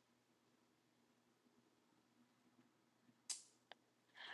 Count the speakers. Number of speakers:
0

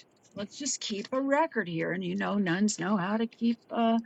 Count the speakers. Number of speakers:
1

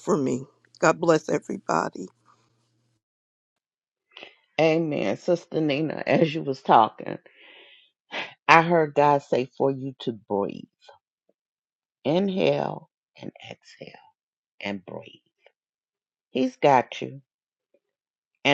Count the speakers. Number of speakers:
2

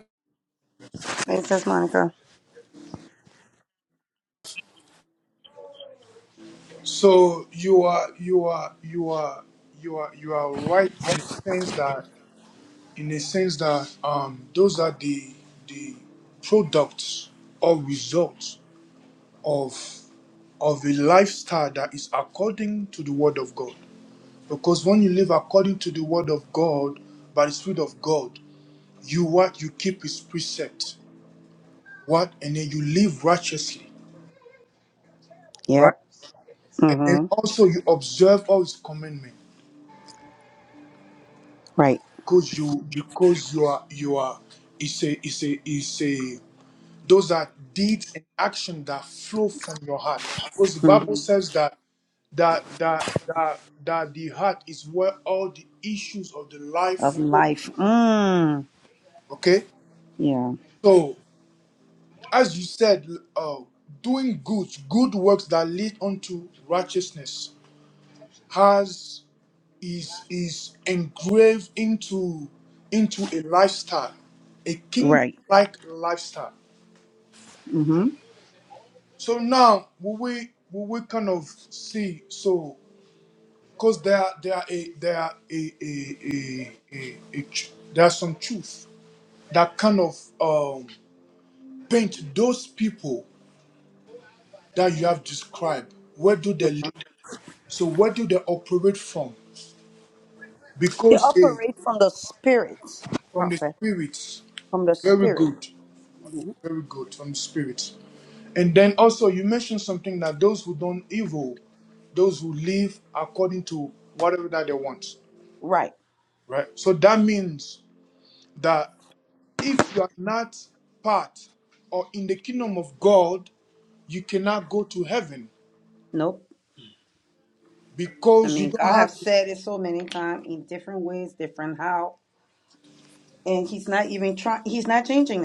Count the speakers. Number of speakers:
2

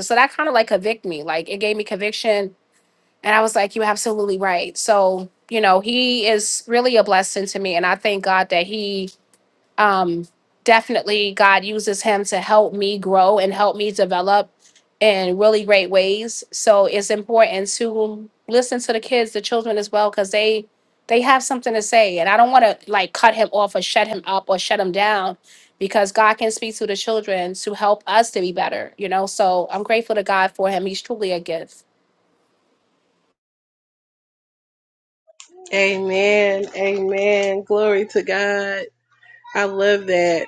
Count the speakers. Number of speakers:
2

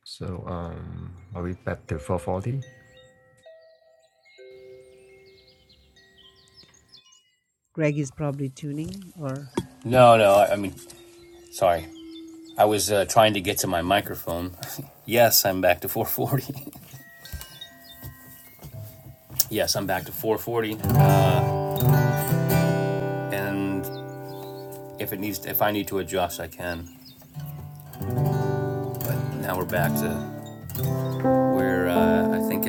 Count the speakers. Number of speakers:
3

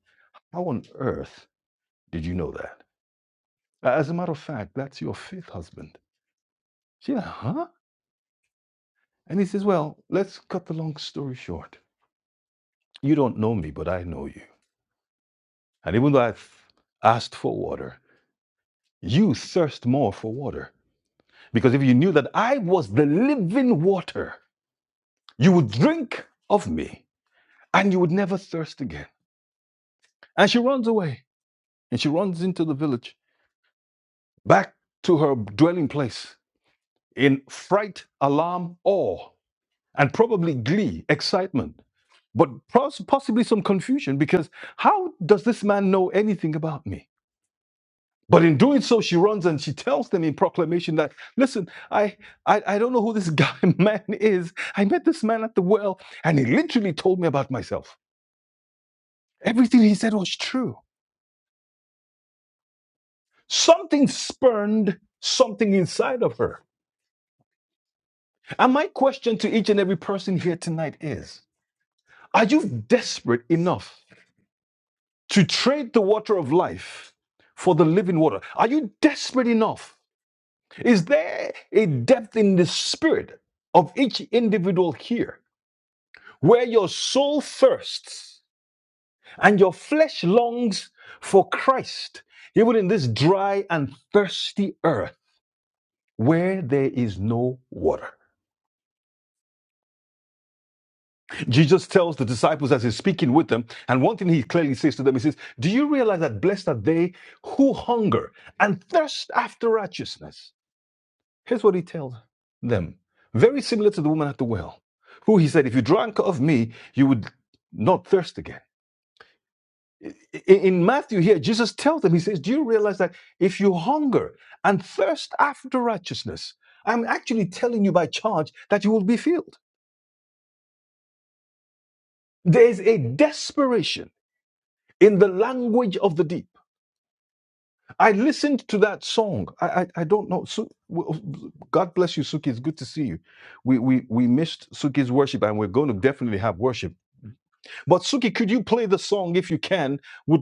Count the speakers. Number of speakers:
1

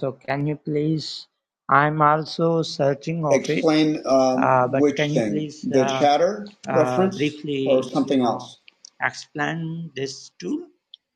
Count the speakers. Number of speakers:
2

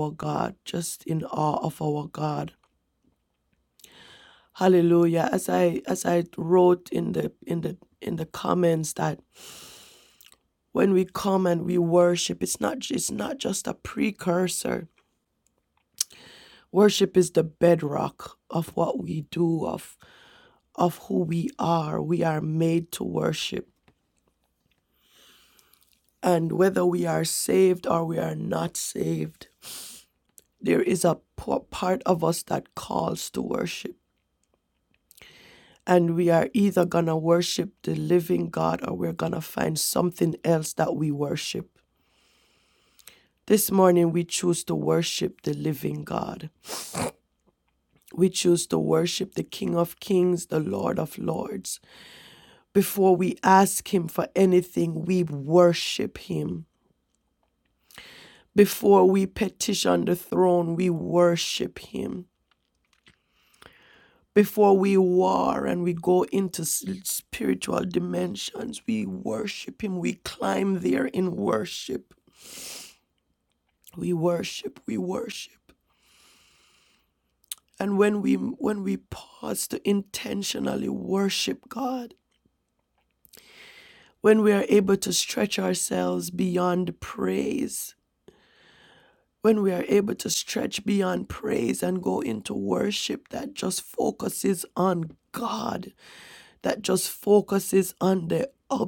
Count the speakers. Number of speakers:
1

